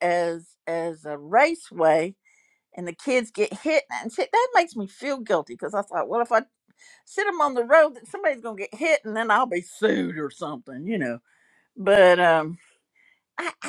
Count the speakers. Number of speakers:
1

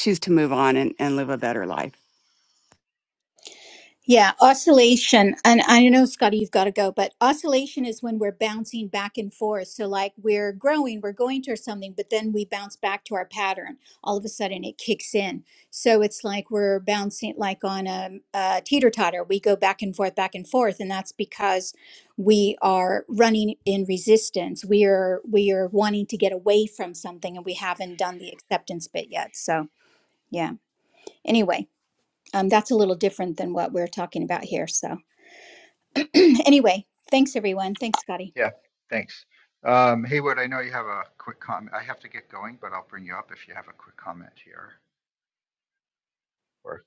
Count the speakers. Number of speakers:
3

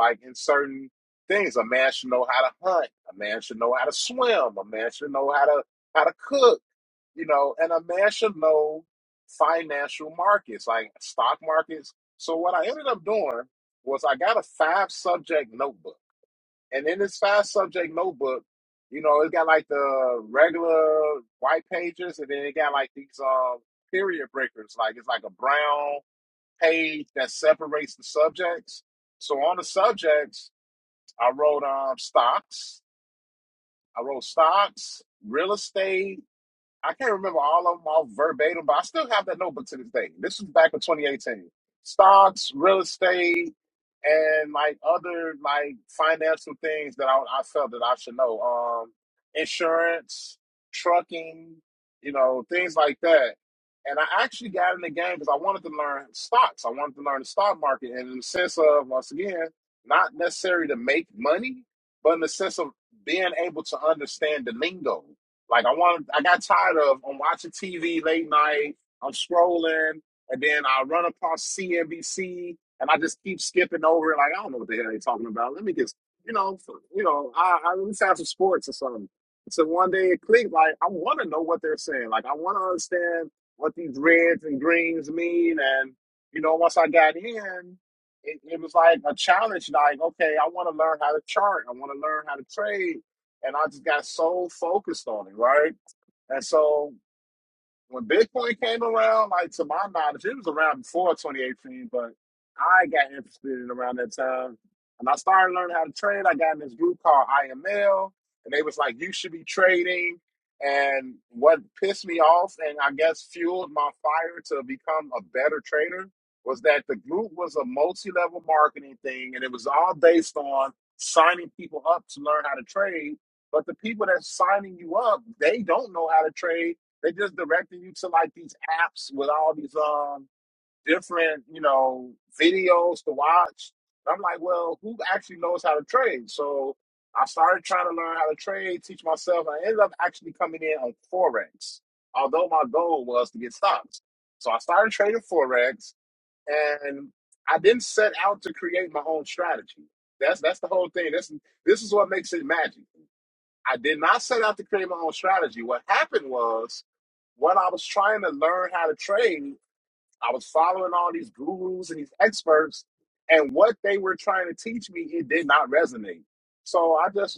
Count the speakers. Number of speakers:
1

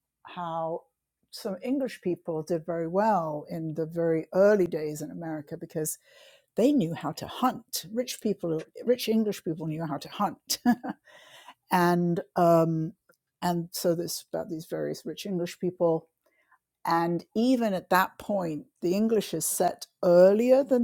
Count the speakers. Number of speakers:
1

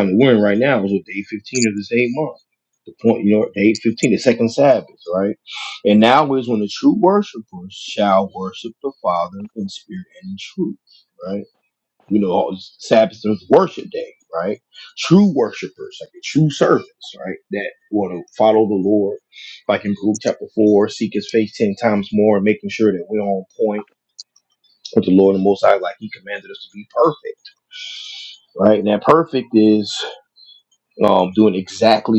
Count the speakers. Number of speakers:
1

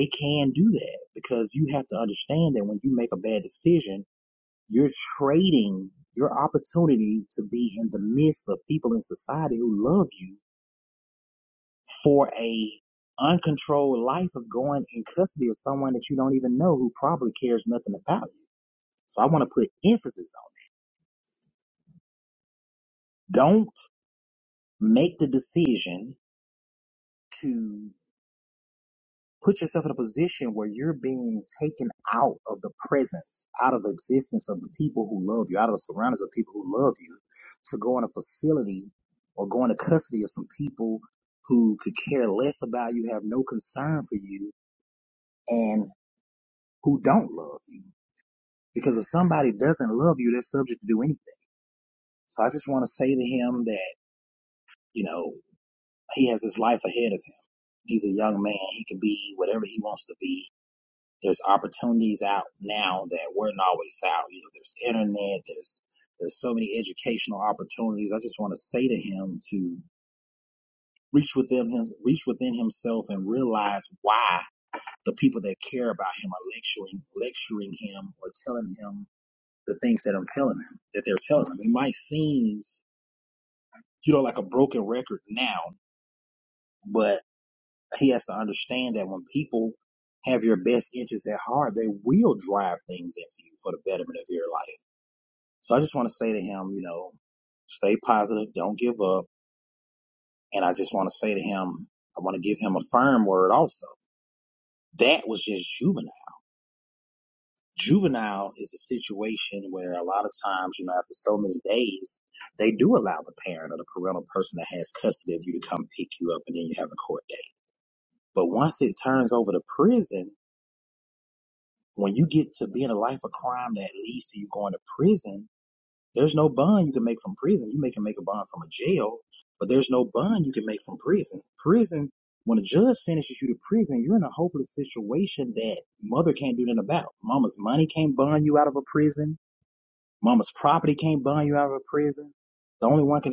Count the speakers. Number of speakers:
1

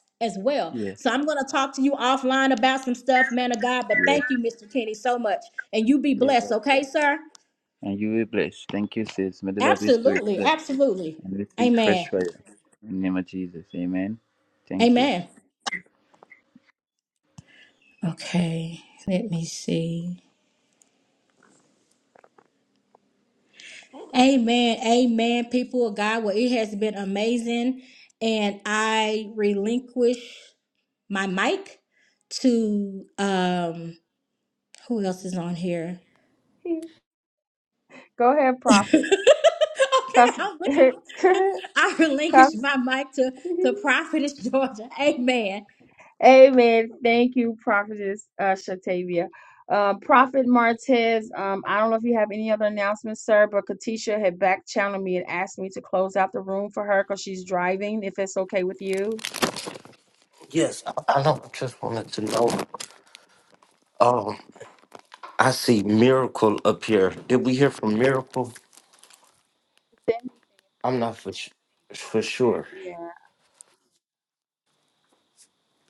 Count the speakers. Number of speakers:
4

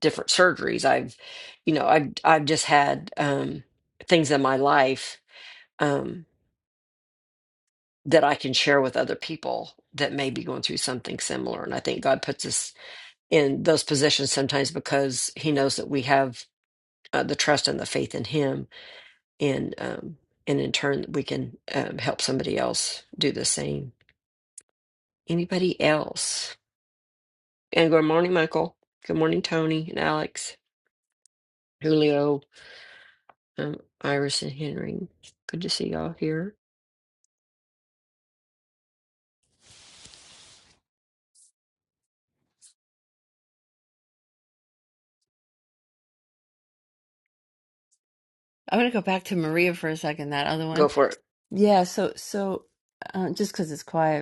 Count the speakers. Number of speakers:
2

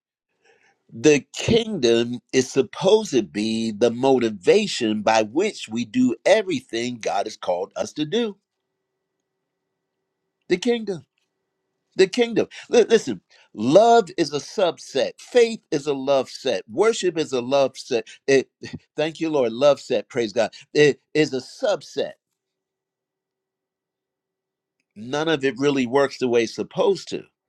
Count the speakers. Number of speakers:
1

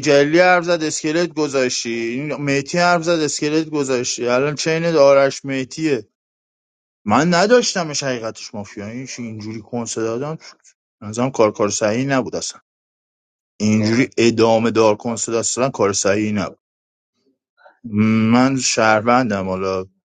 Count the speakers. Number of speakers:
1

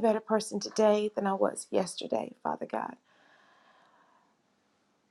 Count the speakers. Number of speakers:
1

